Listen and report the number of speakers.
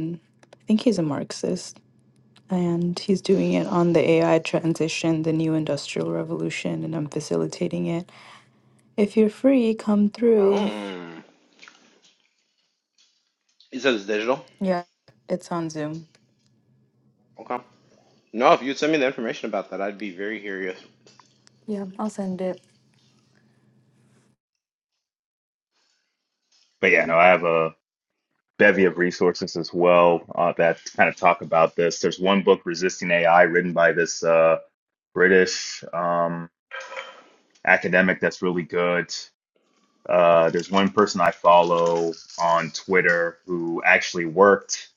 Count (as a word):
three